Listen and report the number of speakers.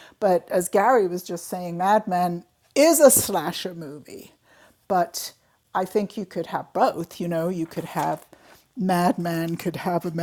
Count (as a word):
one